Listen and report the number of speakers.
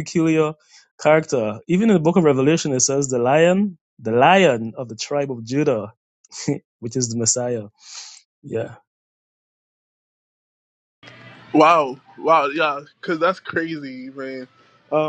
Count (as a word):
two